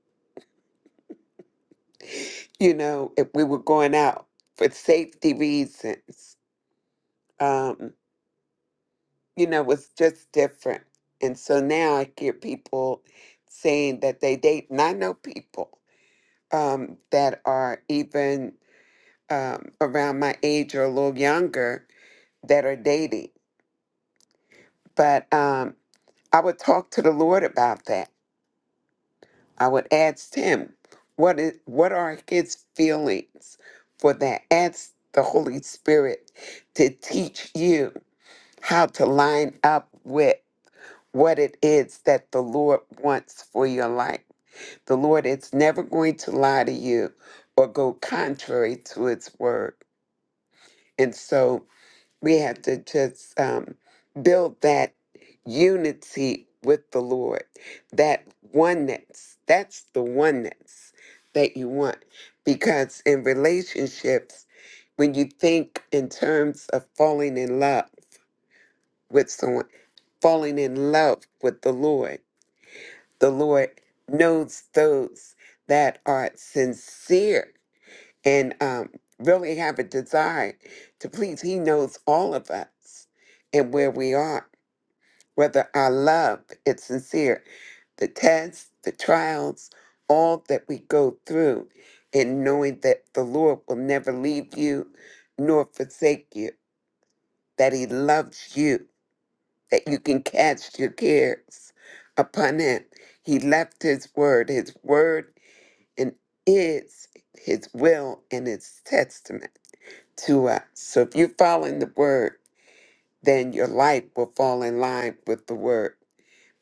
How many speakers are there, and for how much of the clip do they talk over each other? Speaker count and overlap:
1, no overlap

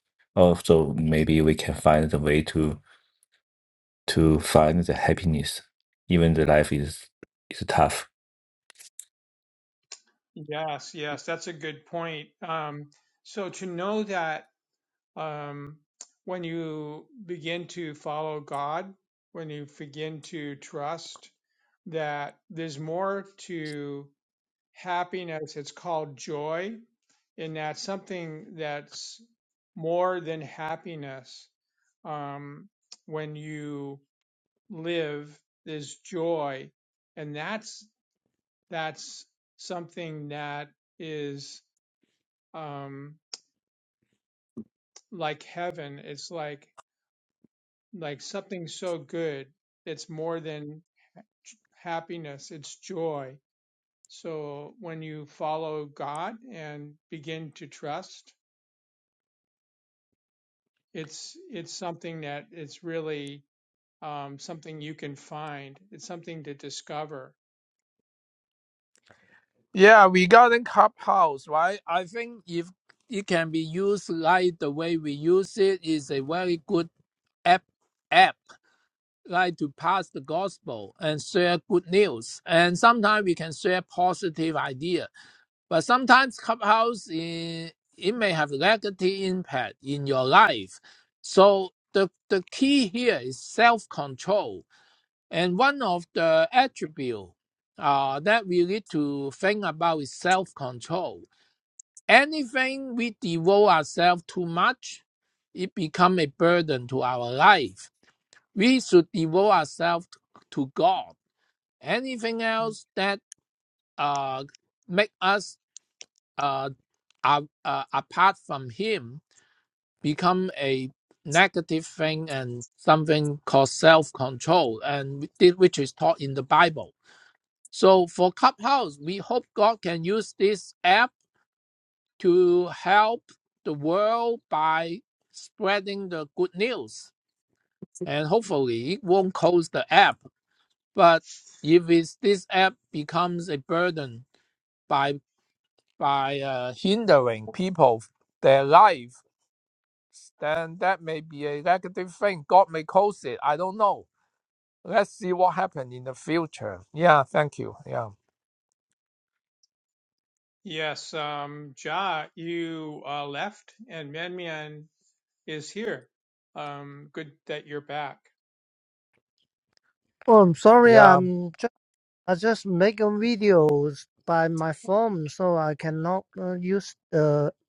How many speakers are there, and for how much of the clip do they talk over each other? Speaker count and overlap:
4, under 1%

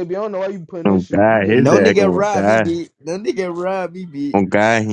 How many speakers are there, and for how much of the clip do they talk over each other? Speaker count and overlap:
3, about 39%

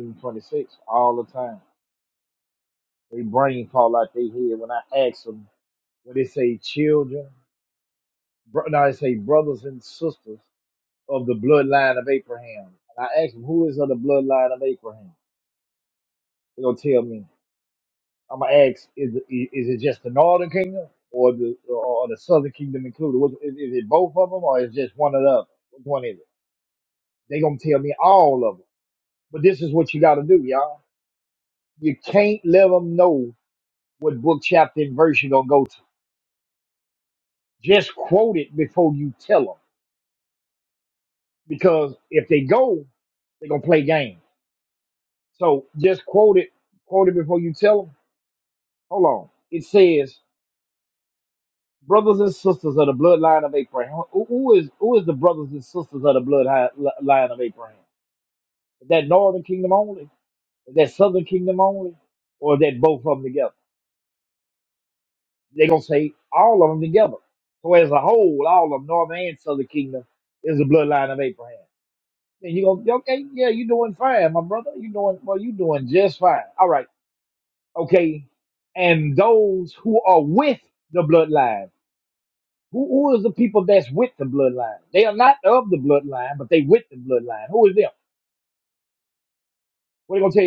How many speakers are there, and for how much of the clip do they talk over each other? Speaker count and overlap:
1, no overlap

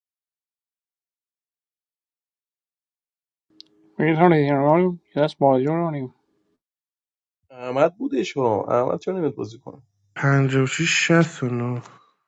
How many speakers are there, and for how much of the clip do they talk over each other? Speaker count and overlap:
3, no overlap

